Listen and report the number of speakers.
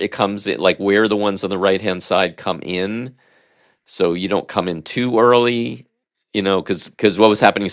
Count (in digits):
1